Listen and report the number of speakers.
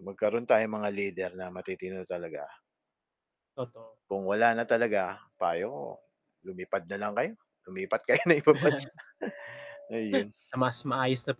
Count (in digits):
2